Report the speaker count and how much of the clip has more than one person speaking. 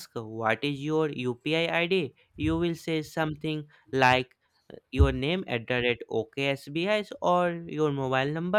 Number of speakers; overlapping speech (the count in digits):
1, no overlap